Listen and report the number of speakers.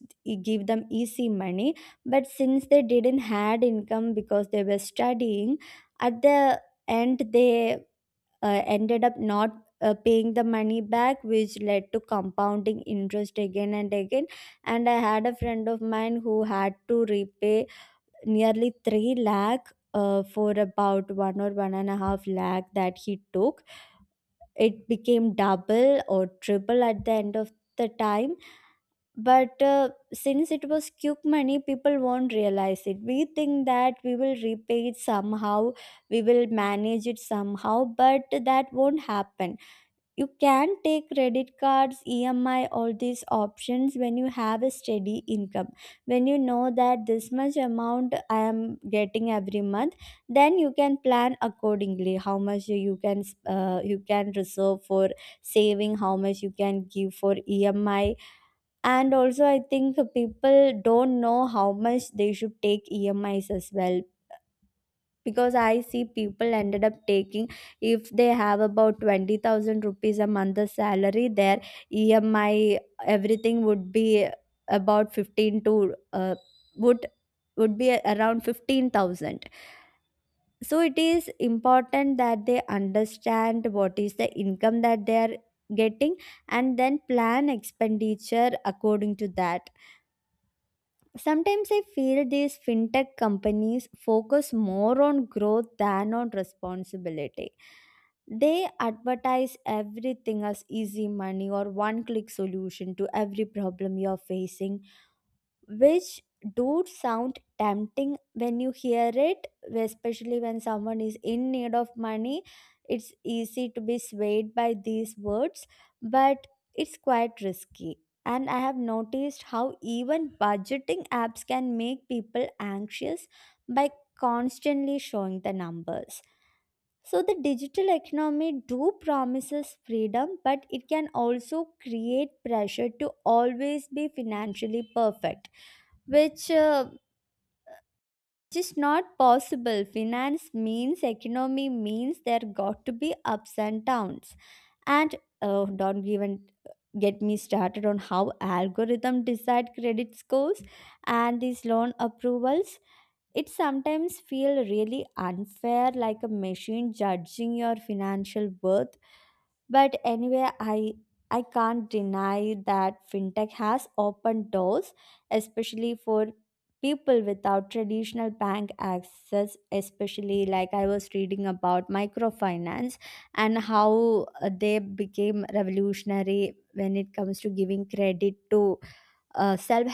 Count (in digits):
1